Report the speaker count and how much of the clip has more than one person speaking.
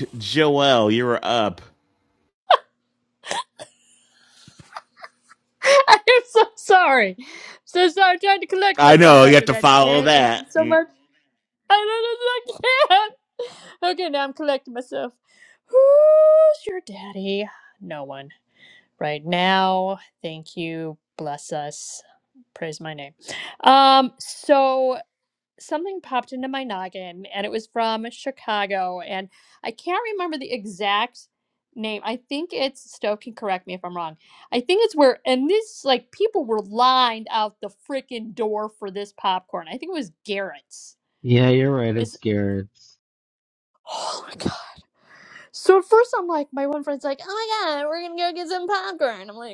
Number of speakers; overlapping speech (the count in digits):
3, about 4%